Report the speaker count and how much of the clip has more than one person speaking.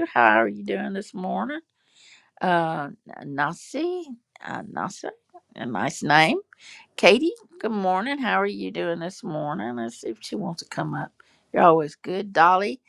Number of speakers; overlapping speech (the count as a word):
one, no overlap